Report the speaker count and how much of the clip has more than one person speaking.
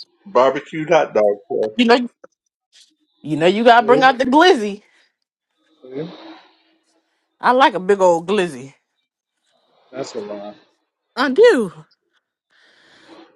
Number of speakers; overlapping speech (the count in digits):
3, about 2%